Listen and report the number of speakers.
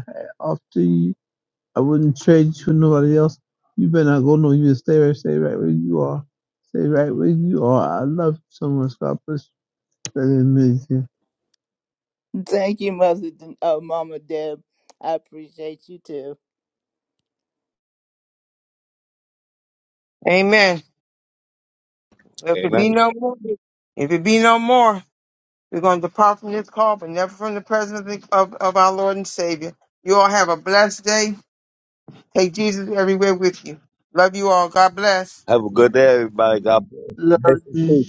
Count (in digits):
4